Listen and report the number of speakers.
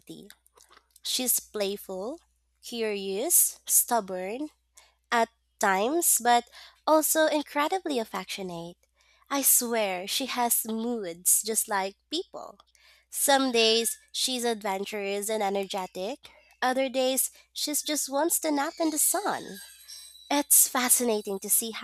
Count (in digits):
1